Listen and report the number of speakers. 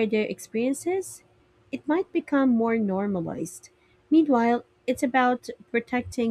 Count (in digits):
1